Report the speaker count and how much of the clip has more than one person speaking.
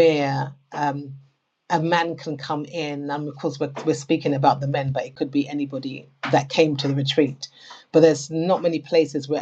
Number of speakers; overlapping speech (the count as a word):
one, no overlap